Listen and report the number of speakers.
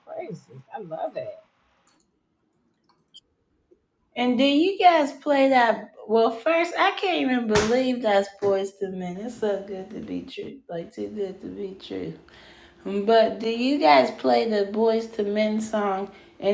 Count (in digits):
2